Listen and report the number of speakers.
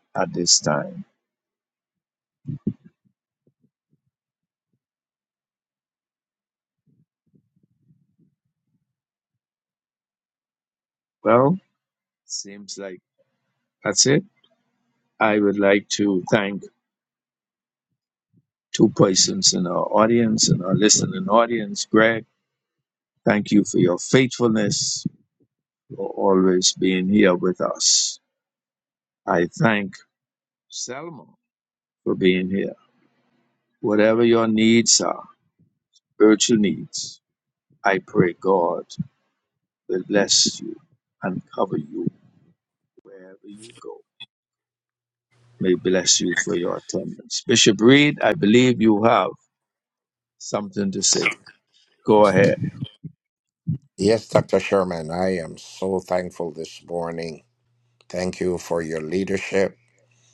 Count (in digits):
2